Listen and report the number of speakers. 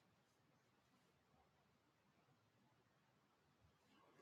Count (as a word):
zero